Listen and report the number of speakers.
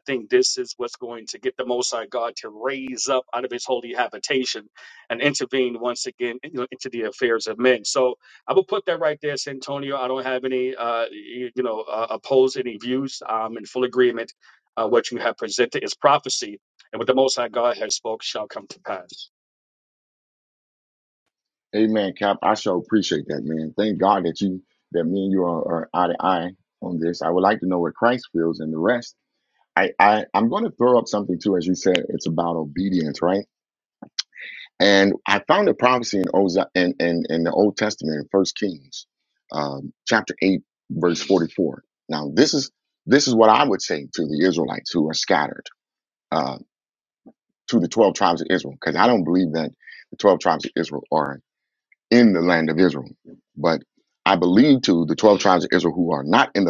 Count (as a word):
two